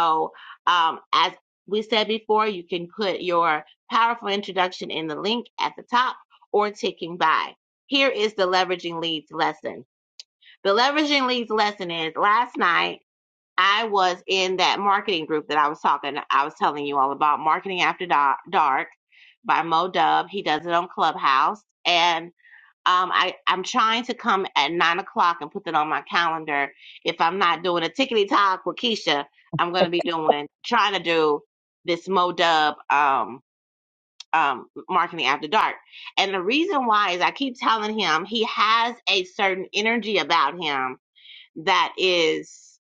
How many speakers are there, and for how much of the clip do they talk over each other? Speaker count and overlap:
one, no overlap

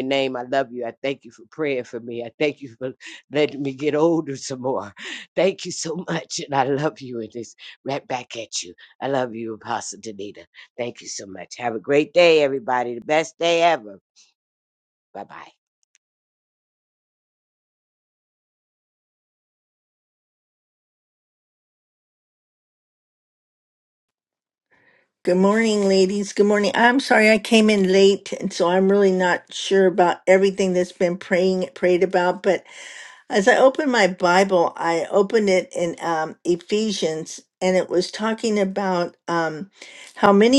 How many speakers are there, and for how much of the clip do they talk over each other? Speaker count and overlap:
two, no overlap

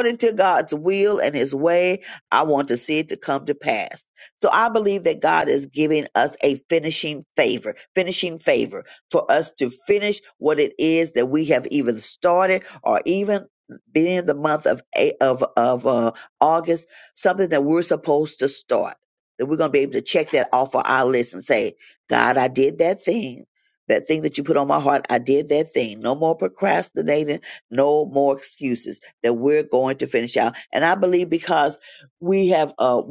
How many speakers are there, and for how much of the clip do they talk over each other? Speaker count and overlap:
one, no overlap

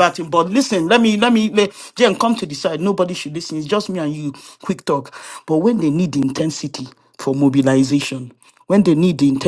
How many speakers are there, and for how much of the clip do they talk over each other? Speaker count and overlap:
one, no overlap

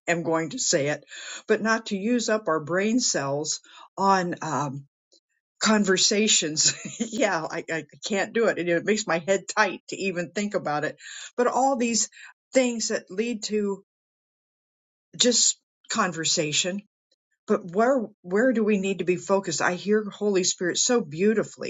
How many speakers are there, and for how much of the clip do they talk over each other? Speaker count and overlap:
one, no overlap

